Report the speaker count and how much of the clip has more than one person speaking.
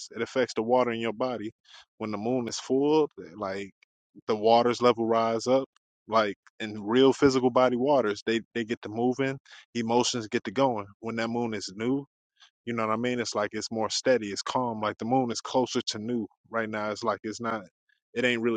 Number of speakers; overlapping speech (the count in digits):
1, no overlap